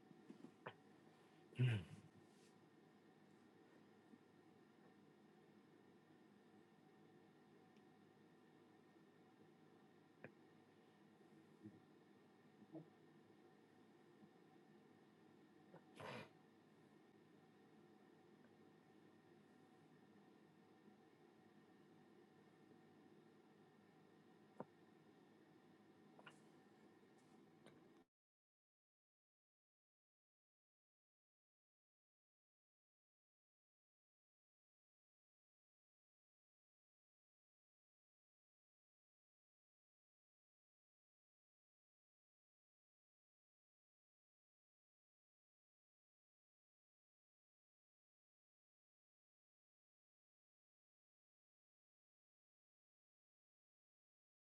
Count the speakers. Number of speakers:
0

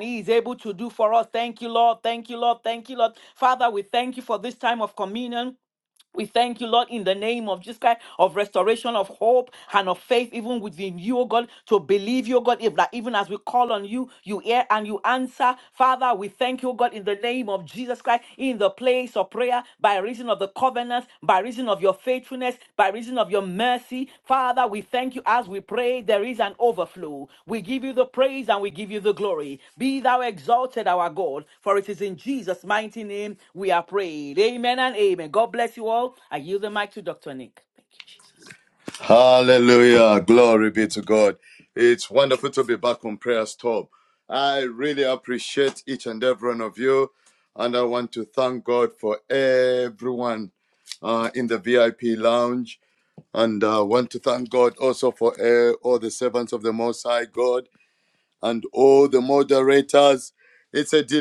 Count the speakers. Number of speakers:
2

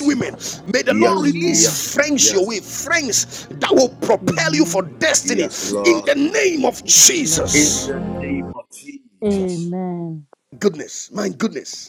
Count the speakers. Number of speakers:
3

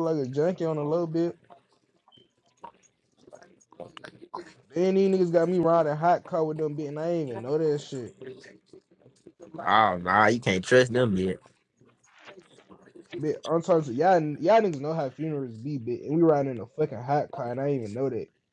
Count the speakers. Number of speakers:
2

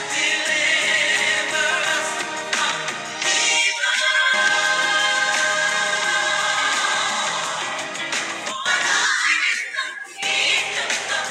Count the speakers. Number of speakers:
0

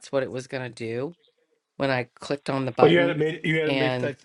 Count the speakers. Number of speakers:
2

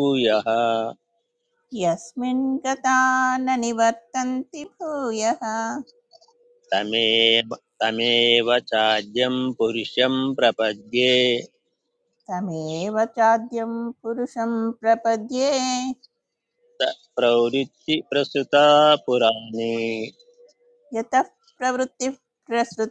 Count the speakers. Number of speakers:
2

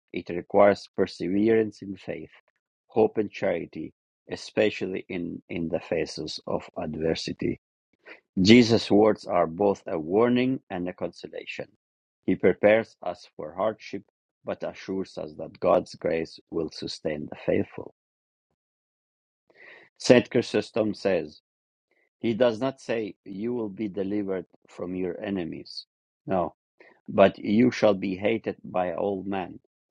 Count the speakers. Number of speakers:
1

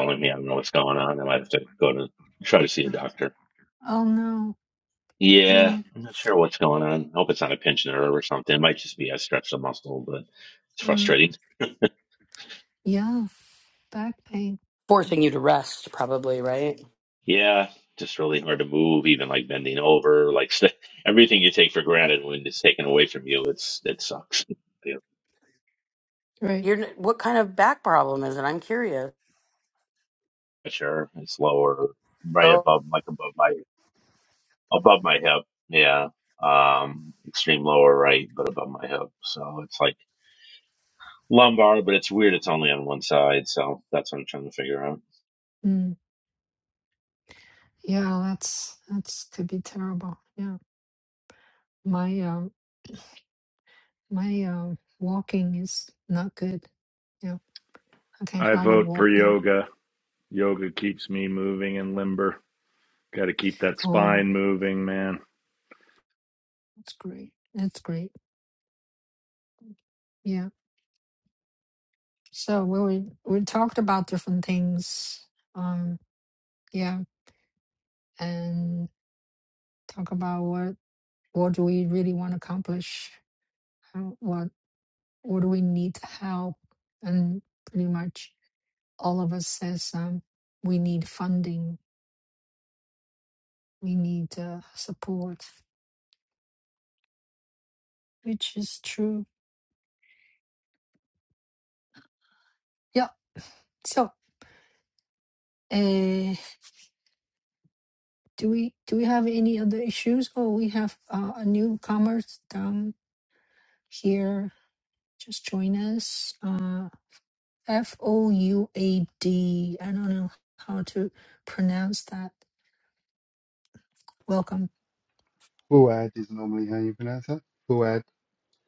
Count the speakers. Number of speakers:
5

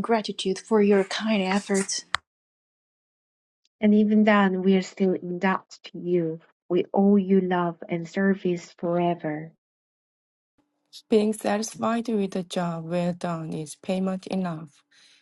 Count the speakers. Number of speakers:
3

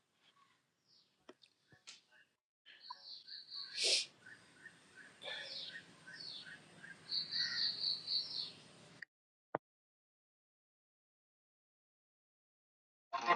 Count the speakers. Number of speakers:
0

